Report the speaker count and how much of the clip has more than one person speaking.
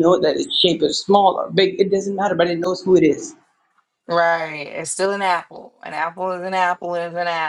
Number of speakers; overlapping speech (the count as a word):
two, no overlap